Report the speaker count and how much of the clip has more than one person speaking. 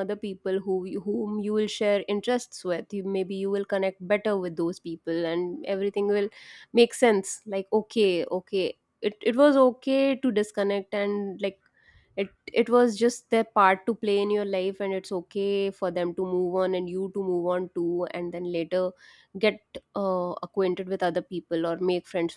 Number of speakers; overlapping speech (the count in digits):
1, no overlap